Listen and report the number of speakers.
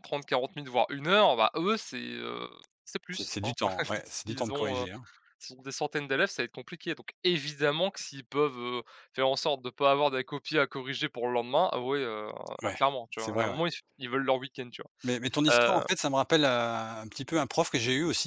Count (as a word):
two